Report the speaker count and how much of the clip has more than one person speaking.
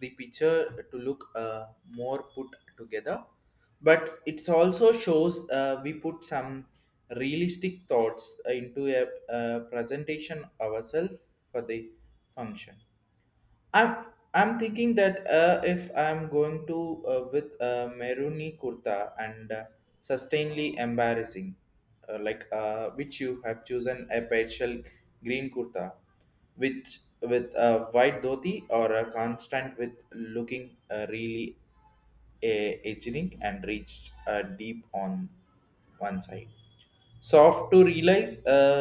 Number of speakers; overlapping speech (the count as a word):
one, no overlap